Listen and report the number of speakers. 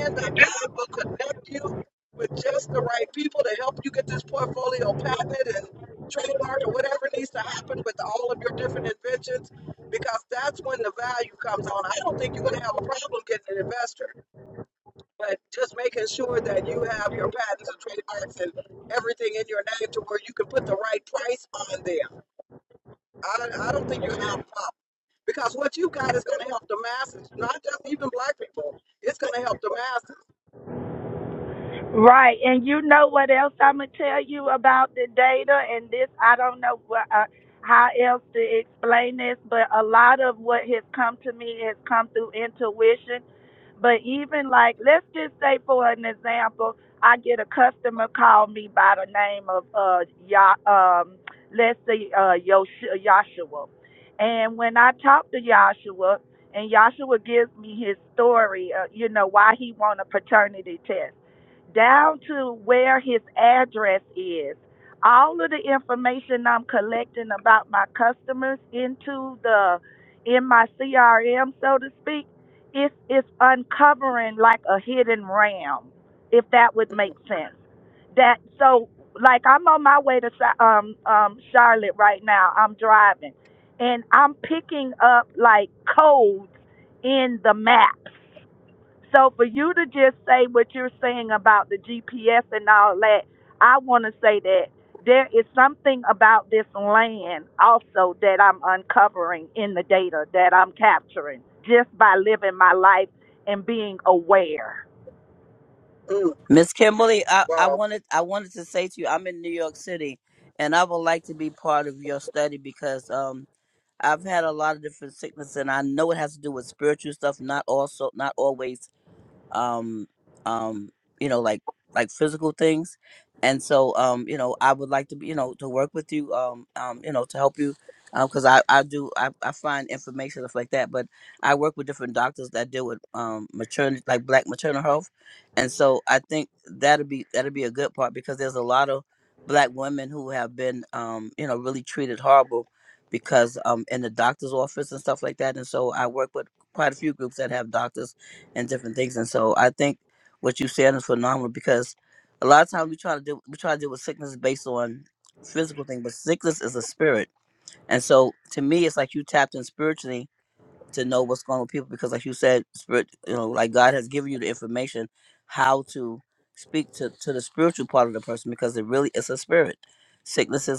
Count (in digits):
3